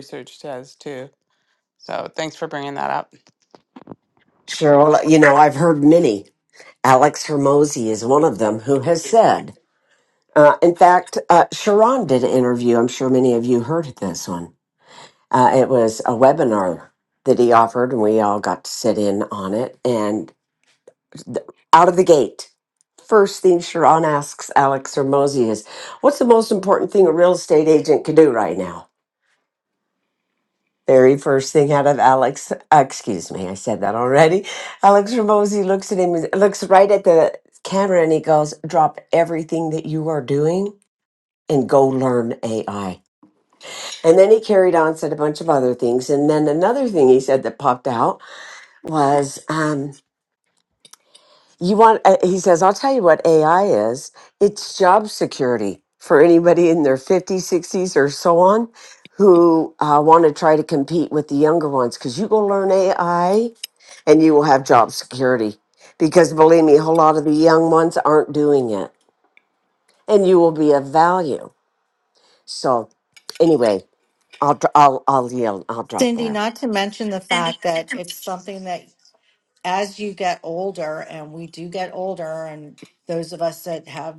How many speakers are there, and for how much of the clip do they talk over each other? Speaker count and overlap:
three, under 1%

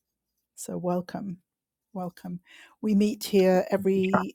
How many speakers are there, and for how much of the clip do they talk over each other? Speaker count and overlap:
one, no overlap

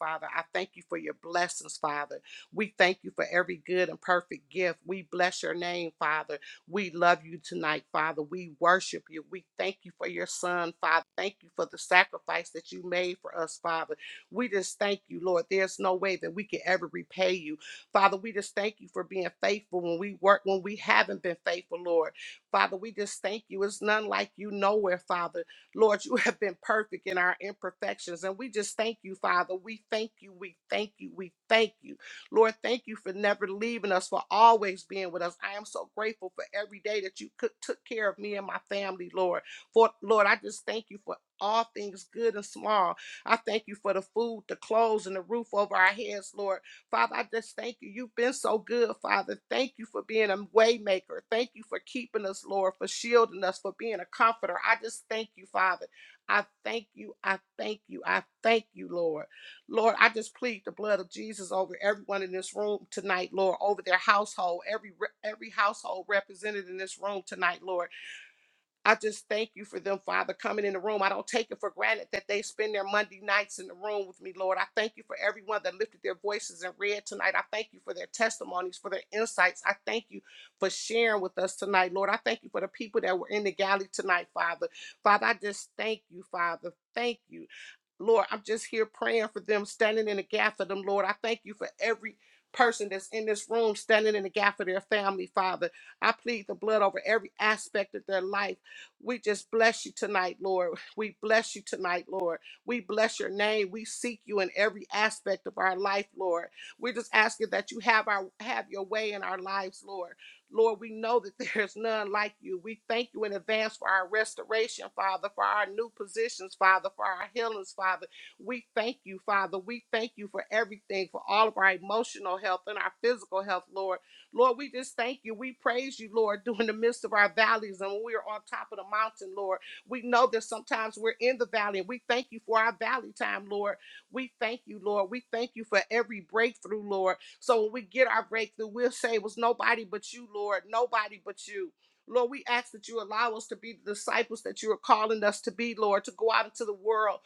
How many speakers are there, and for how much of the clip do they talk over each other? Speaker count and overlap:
one, no overlap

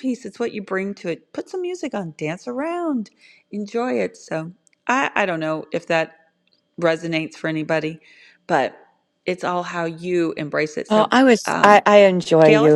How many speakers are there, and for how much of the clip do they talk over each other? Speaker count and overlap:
two, about 7%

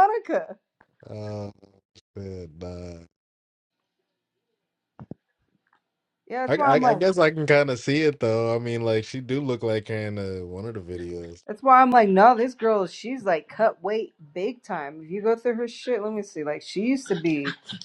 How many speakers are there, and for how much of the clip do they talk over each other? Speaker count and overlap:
two, about 3%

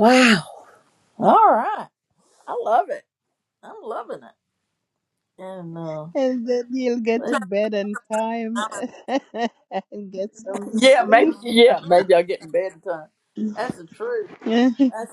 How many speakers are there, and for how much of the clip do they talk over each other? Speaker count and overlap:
two, about 6%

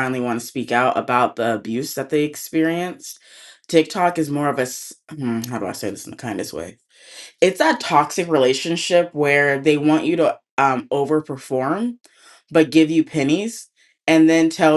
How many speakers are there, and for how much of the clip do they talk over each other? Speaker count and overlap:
one, no overlap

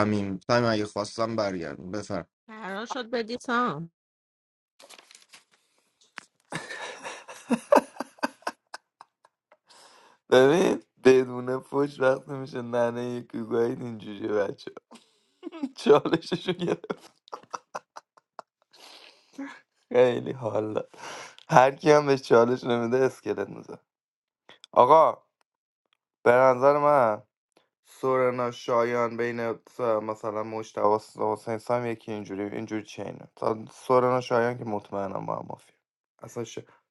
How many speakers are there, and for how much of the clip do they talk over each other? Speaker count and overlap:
three, no overlap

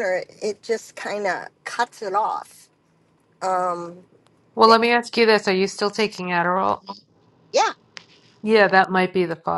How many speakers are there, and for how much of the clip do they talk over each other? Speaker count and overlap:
two, no overlap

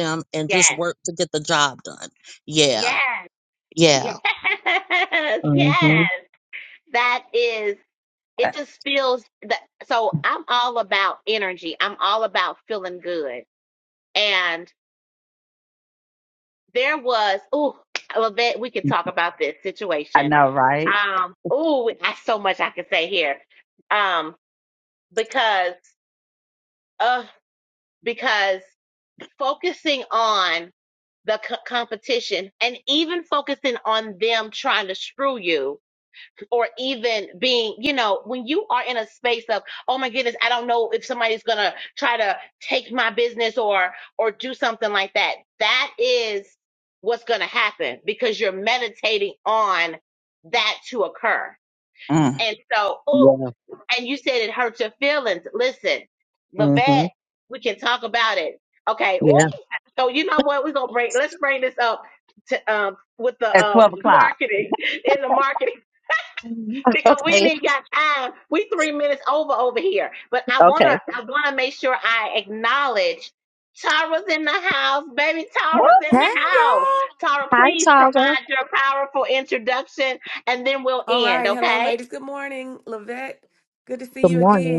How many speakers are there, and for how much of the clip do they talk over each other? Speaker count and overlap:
four, about 9%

